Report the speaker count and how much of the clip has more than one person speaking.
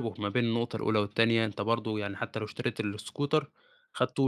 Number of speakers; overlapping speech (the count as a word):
one, no overlap